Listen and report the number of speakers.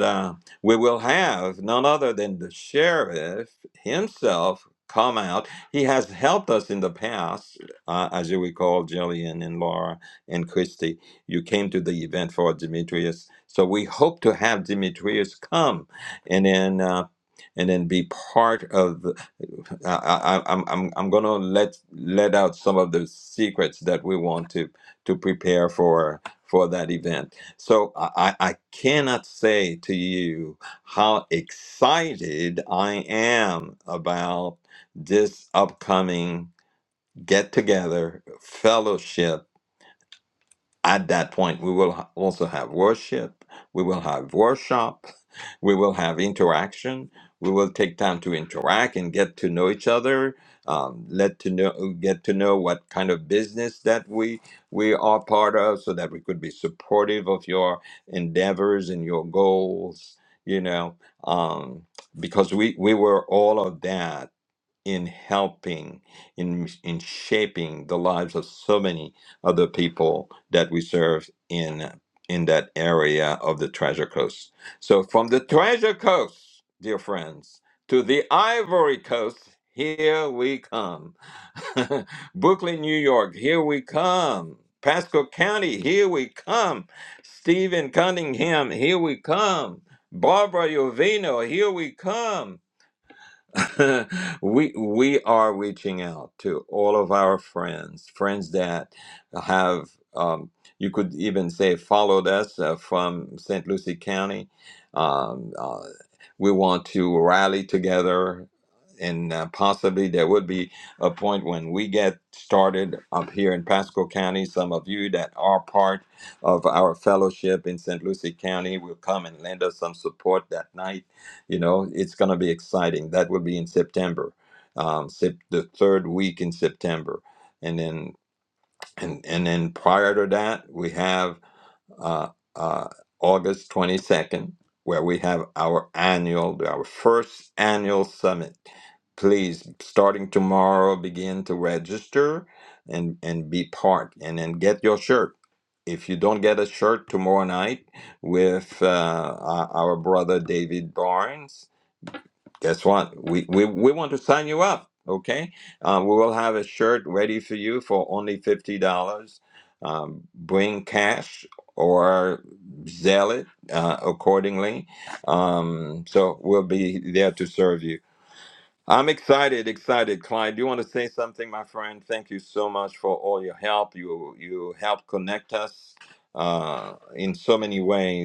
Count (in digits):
1